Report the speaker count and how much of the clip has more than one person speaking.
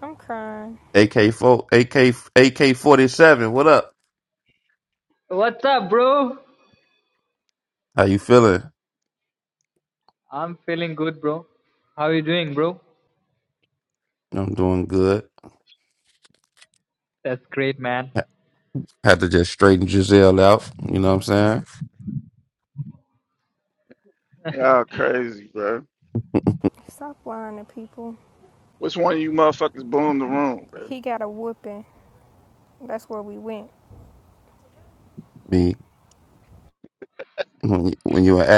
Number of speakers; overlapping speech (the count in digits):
4, under 1%